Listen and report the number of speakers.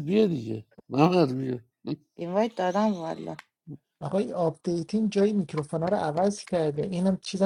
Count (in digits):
3